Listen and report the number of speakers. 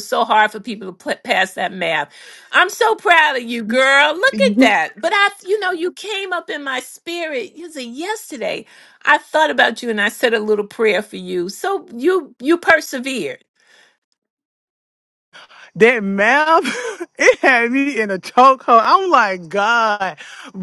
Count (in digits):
2